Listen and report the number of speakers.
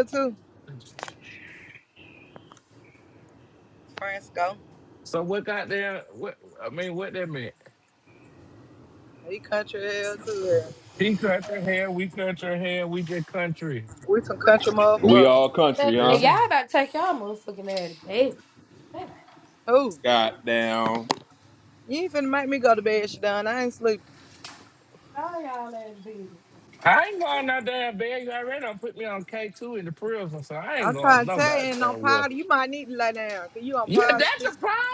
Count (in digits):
4